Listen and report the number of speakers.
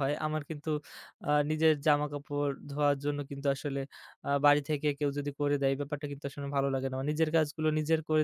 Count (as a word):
one